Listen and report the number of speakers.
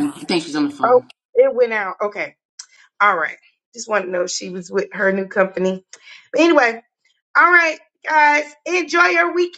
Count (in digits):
2